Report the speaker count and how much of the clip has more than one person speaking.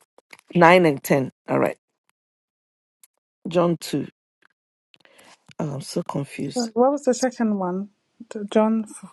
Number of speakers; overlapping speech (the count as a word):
two, no overlap